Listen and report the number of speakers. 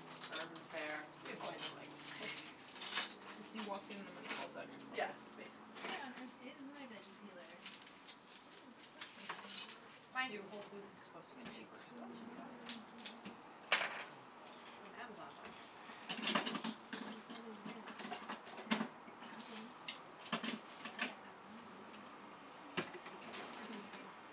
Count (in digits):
3